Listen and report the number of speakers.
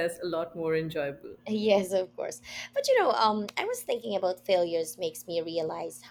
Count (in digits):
2